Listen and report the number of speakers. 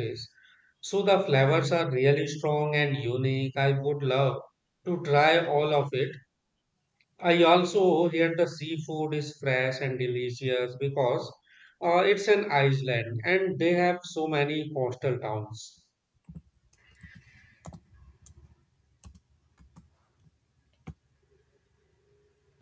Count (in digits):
1